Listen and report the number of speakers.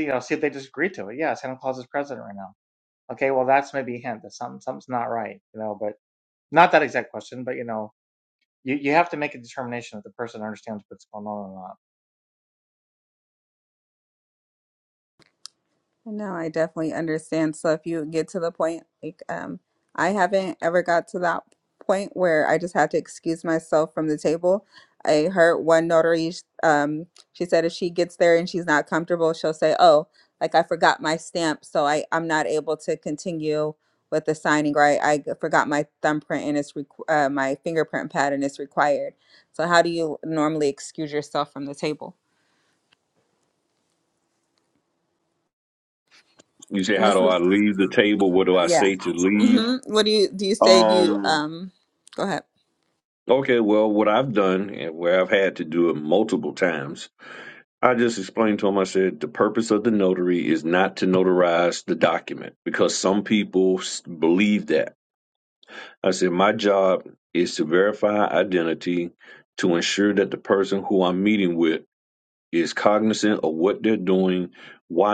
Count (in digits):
3